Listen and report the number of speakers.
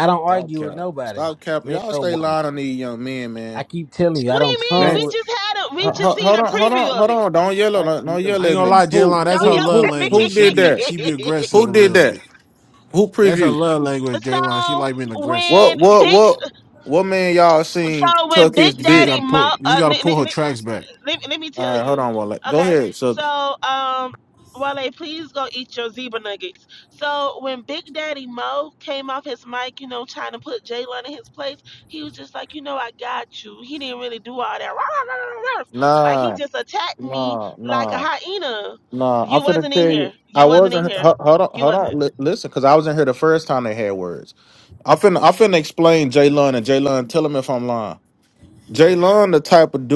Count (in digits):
4